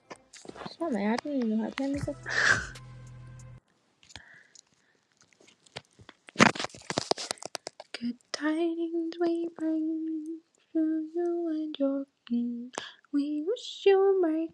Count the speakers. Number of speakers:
2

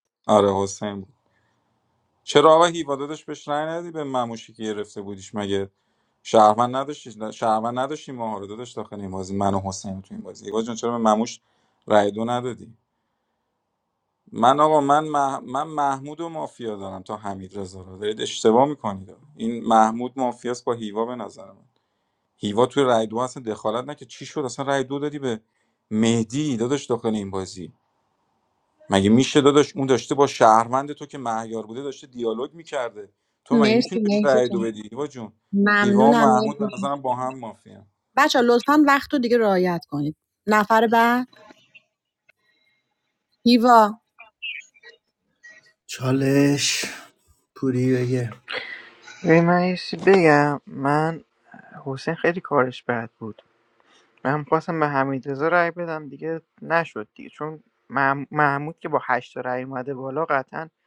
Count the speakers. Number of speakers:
4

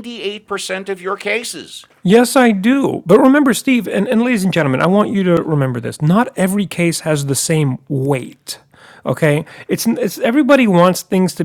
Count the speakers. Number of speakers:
2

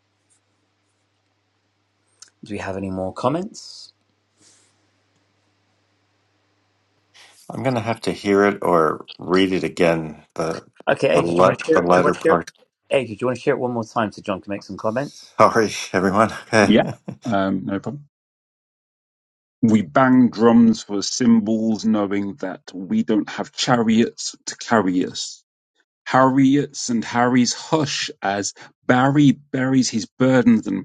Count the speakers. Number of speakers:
3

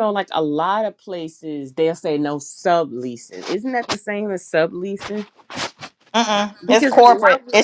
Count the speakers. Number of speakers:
2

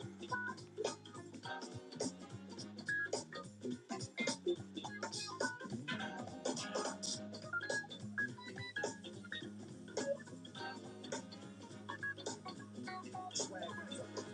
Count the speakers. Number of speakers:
0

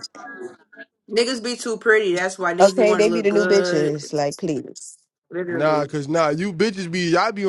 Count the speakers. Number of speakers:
3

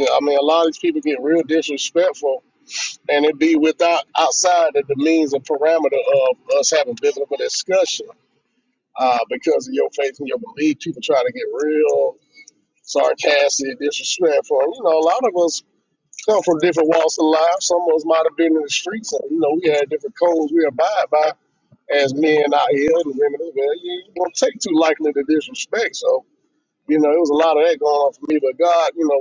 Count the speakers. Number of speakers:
1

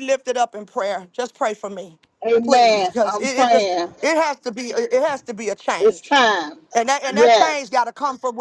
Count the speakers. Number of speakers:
2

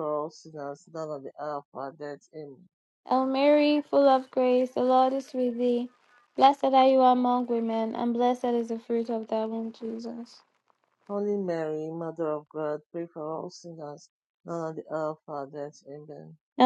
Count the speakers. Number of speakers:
2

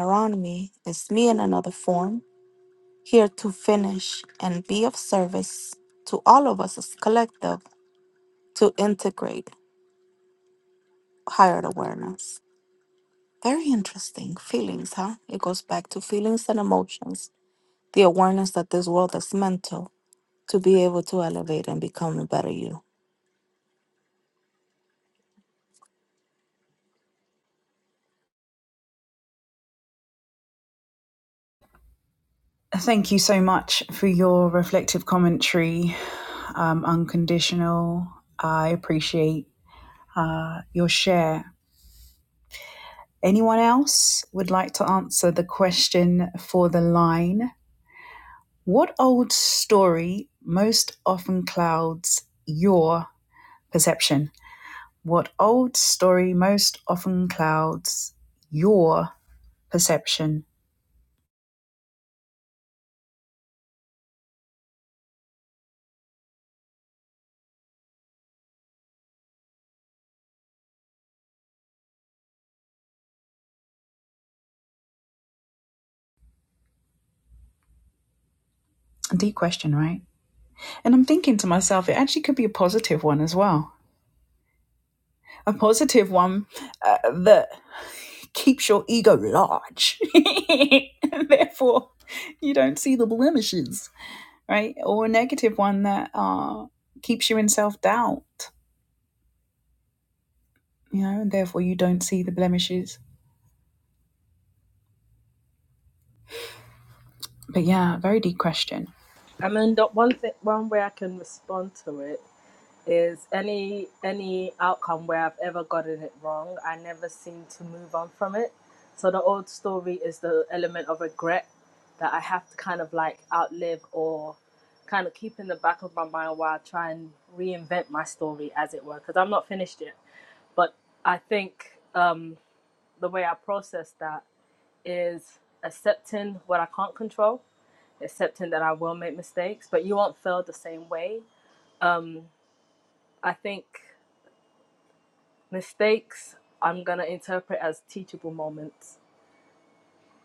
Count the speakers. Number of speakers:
3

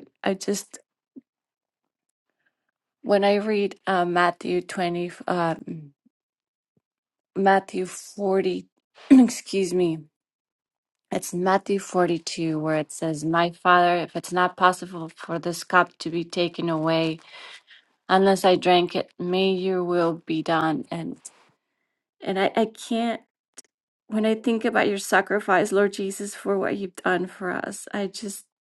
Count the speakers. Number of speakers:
1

